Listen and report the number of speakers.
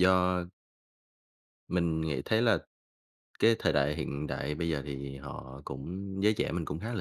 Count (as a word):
one